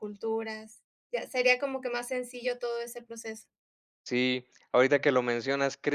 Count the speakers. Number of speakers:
2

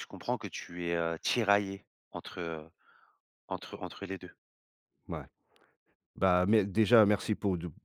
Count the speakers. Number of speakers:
2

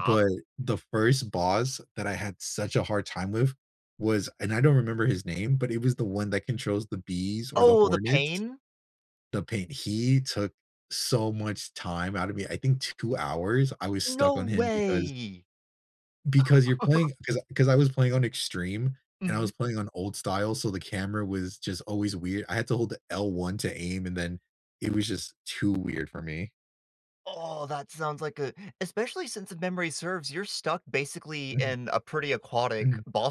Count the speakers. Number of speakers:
2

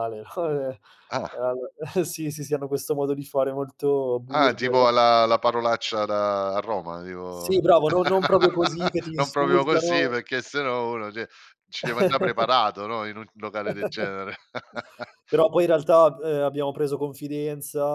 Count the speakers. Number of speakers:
2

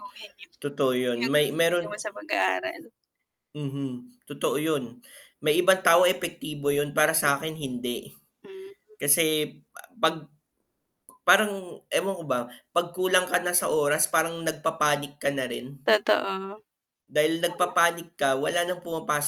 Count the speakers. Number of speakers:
2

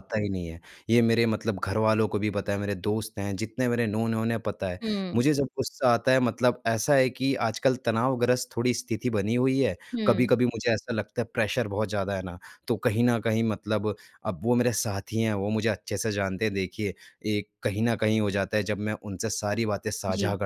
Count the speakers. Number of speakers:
2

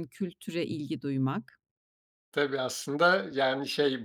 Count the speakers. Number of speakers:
2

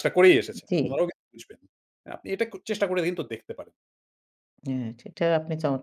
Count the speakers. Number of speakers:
2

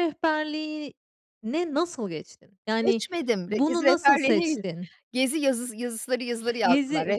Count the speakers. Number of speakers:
2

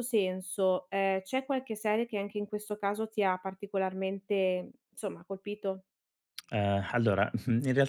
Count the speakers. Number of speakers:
2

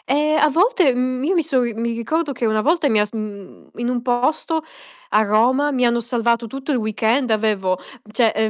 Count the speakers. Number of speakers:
1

